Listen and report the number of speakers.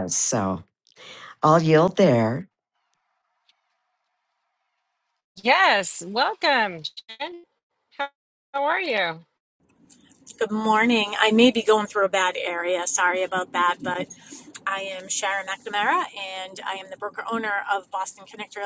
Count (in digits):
3